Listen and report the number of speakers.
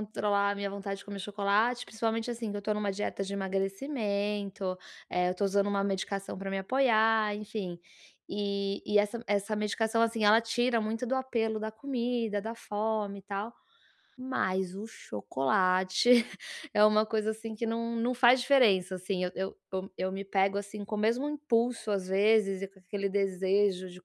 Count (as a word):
one